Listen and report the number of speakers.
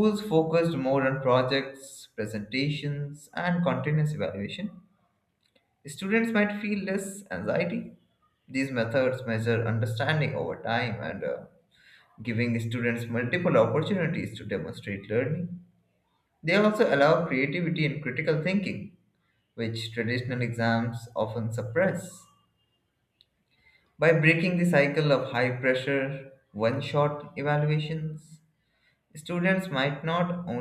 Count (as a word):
one